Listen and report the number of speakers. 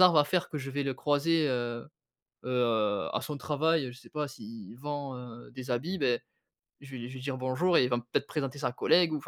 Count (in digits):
1